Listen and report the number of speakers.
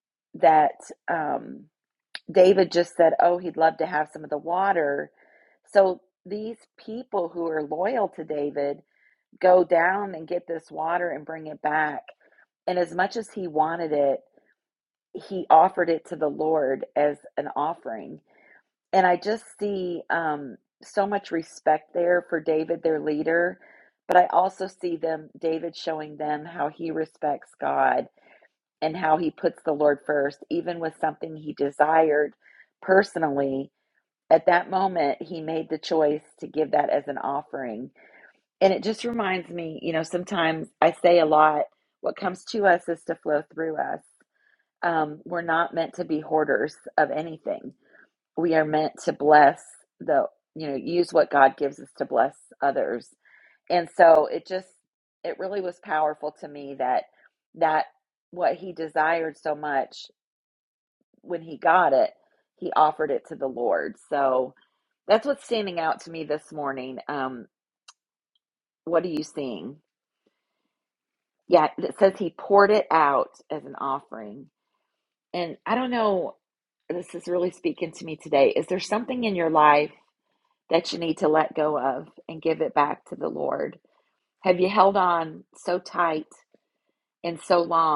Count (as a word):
one